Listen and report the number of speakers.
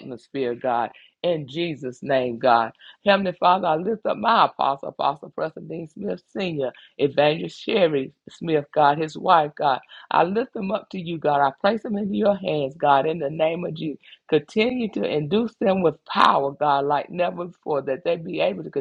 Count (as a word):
one